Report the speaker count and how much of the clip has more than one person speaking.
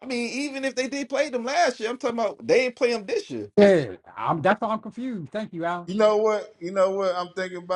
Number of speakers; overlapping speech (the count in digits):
3, no overlap